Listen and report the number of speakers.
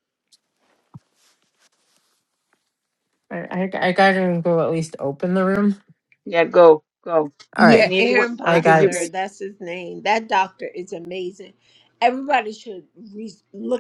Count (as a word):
three